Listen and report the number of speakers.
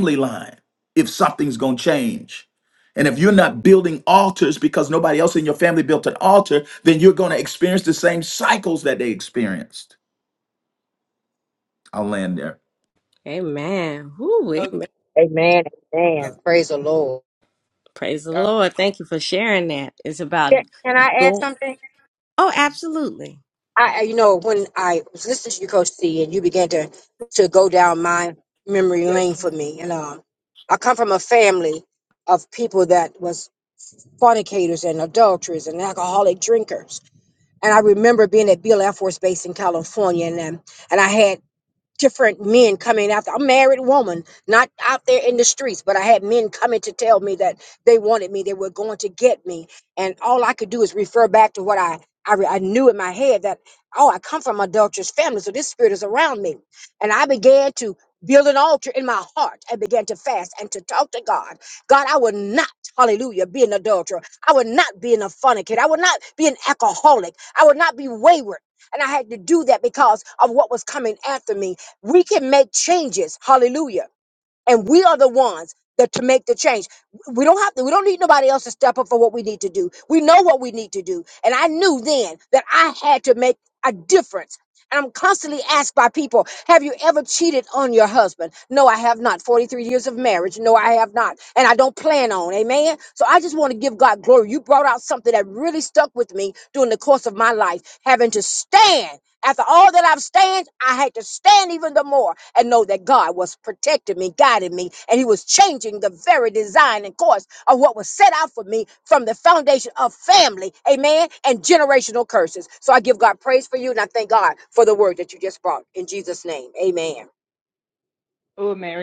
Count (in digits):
4